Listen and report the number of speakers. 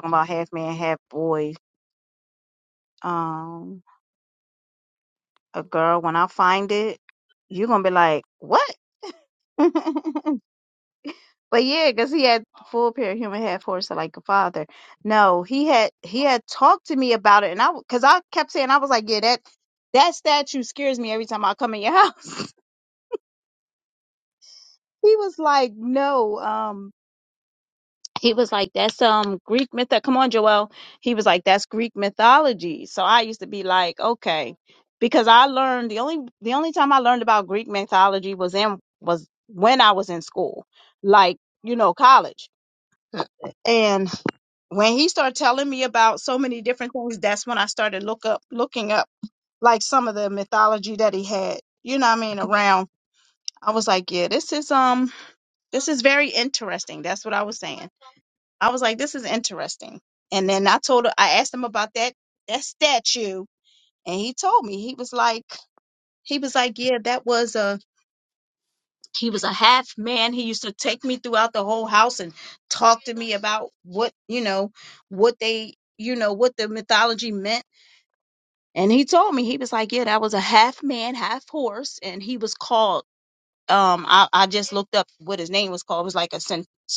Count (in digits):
1